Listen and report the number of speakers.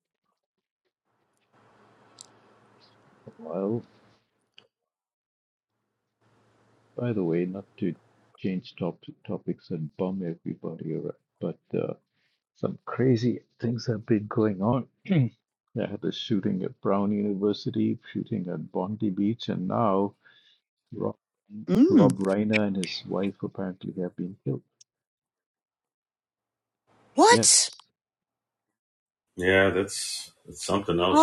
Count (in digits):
3